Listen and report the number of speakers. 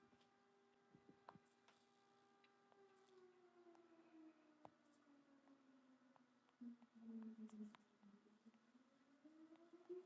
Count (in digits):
0